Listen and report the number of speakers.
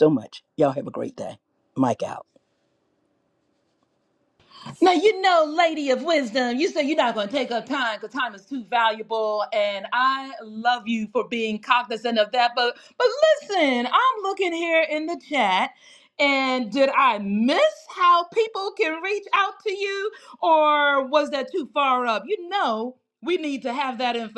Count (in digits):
2